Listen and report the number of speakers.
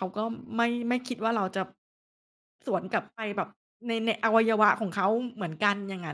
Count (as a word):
one